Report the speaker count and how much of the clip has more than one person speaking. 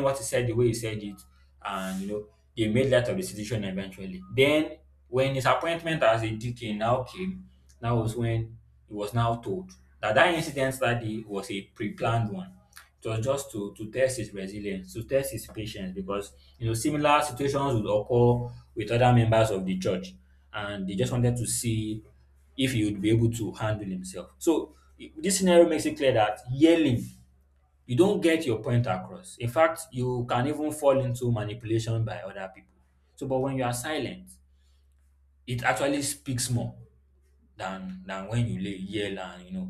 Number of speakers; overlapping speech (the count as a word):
one, no overlap